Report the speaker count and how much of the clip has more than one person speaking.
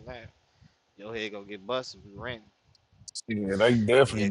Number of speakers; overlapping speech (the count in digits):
2, about 6%